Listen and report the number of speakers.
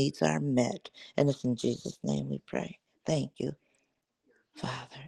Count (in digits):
1